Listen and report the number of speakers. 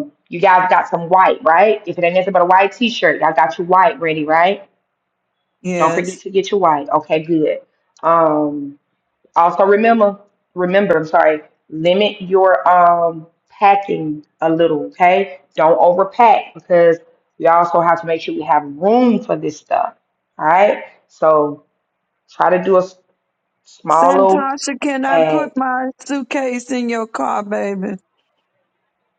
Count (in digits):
2